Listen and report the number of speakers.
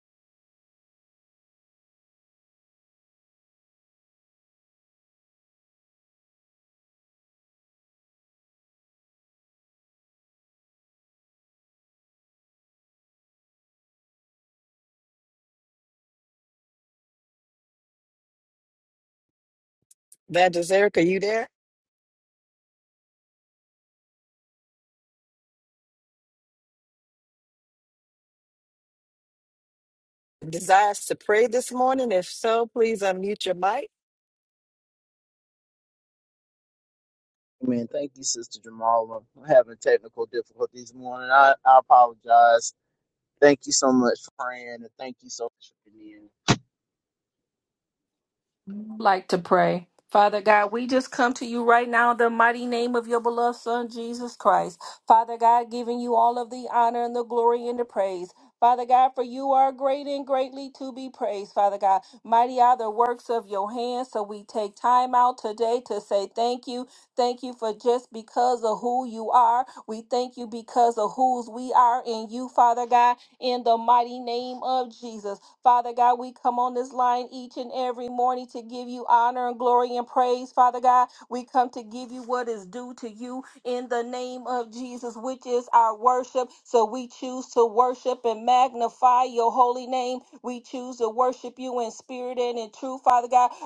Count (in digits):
3